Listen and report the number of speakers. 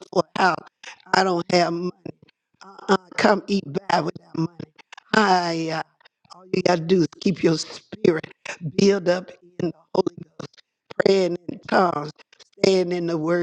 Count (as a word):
one